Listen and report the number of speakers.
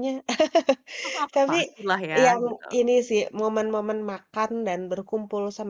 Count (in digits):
2